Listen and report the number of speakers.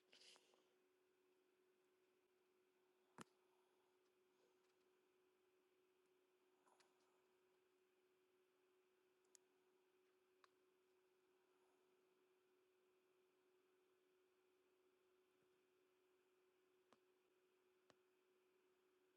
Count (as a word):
zero